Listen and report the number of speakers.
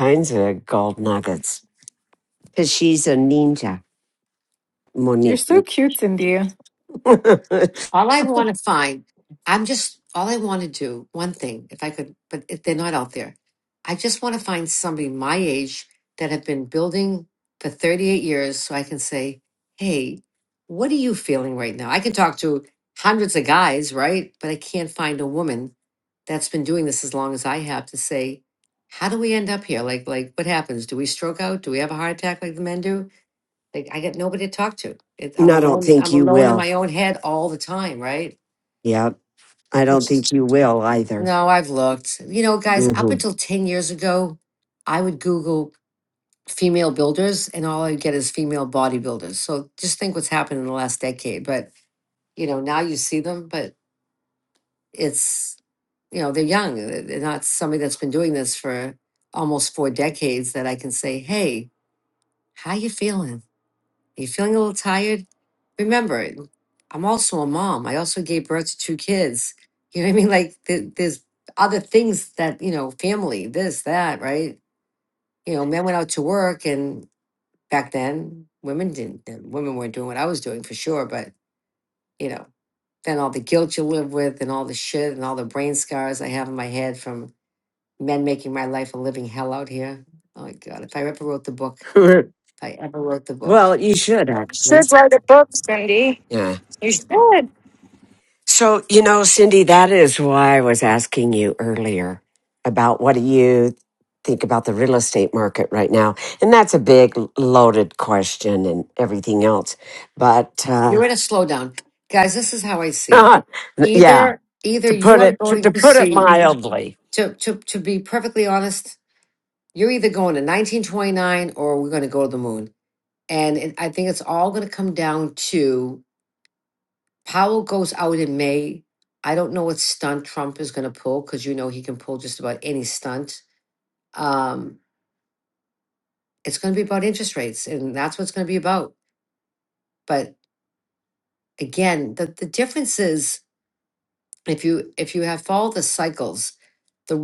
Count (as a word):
four